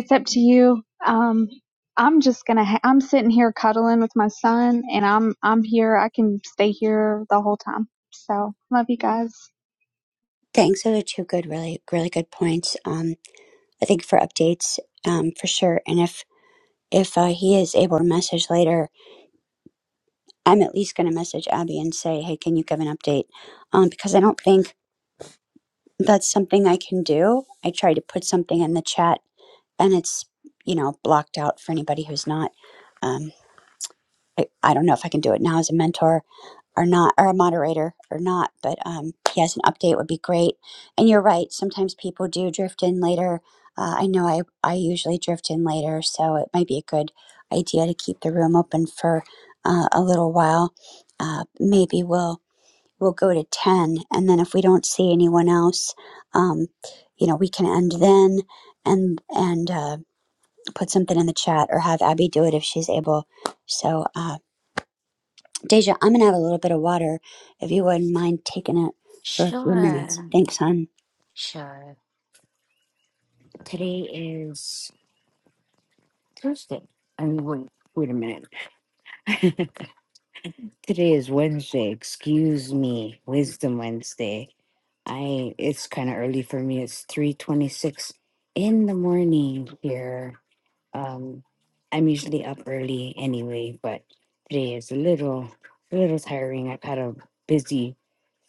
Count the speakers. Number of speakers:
three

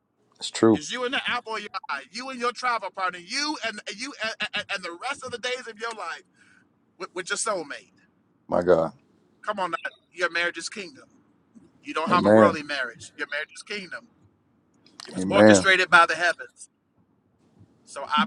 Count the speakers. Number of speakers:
two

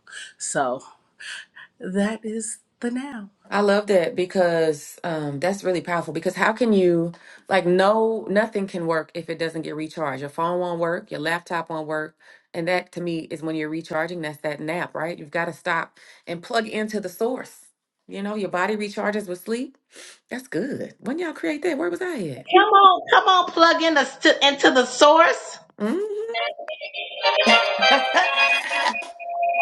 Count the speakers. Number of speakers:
three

